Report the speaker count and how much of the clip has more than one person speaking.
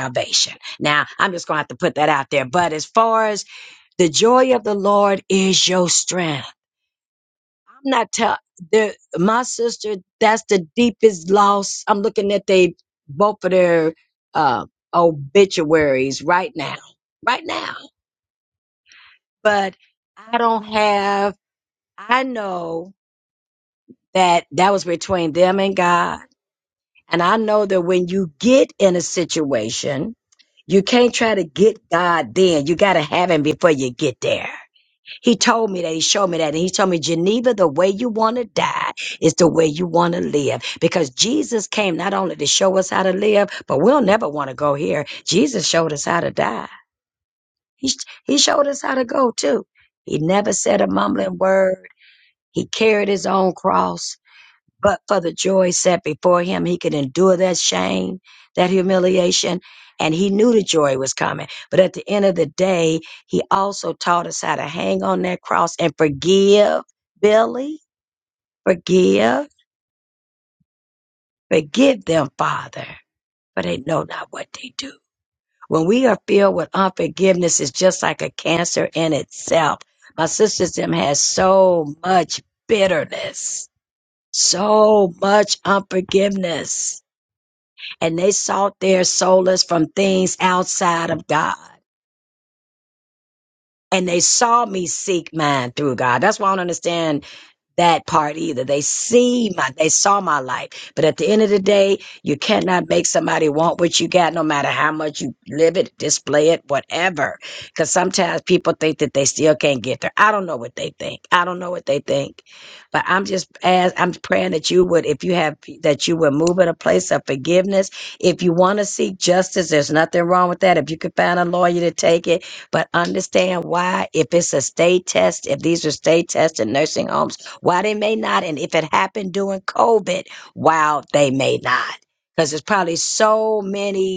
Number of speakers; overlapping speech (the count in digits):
1, no overlap